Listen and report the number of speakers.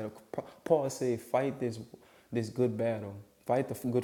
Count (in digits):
1